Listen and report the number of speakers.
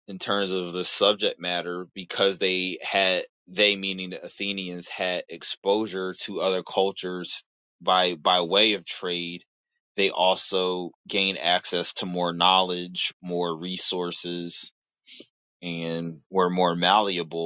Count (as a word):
one